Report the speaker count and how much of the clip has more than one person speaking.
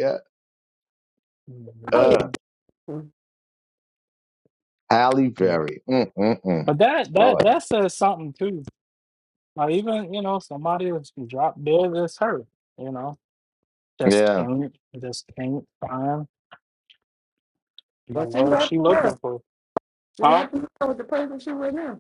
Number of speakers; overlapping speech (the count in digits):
3, about 11%